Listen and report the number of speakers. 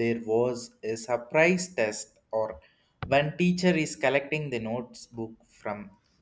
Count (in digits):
1